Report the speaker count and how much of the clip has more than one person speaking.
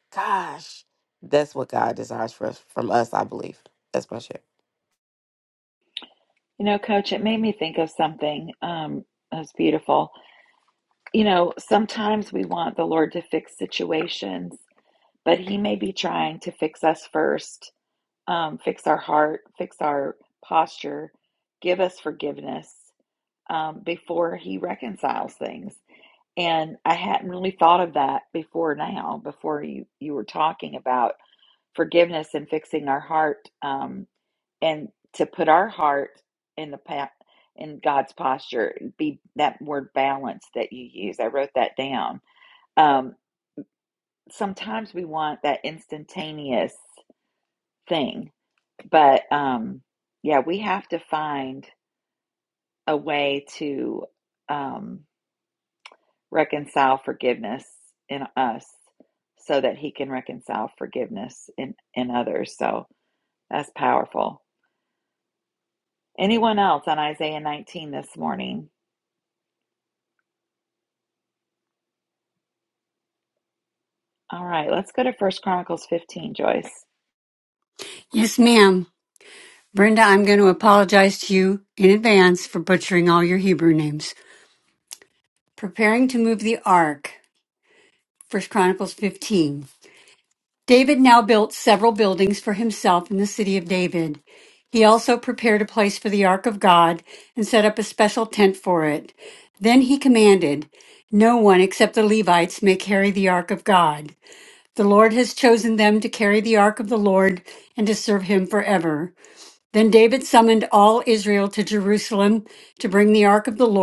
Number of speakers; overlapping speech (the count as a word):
three, no overlap